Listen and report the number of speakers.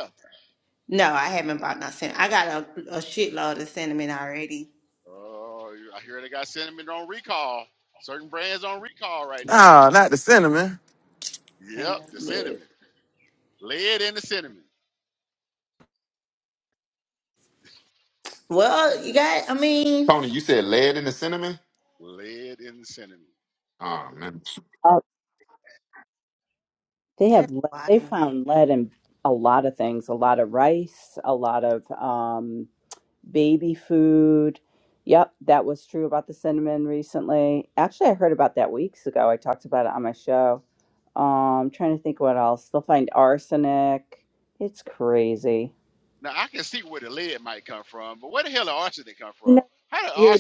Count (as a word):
five